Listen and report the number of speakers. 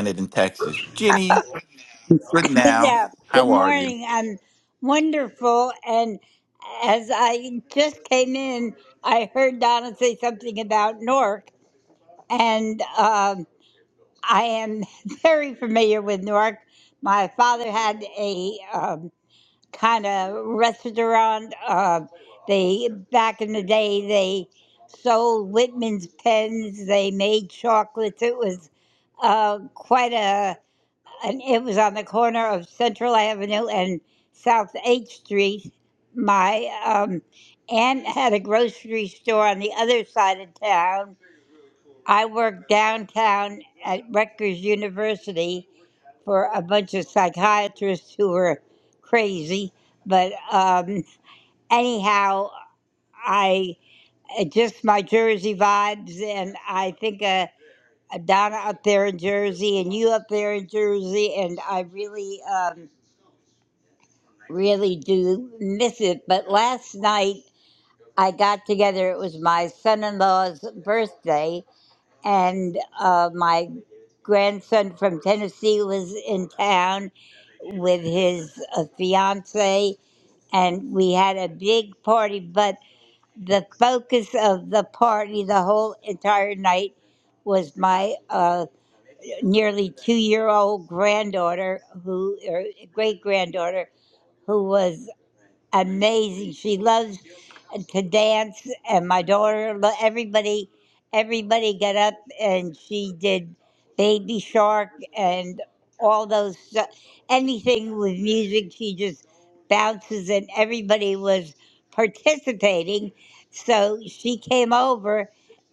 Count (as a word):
two